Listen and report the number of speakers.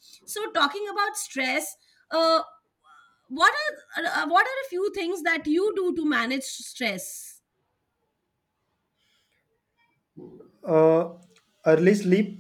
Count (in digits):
2